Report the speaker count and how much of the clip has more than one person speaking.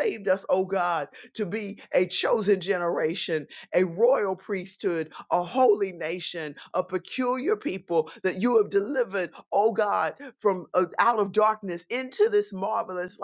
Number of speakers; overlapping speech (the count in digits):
1, no overlap